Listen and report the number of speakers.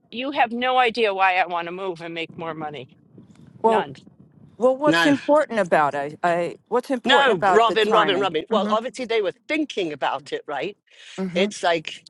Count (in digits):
3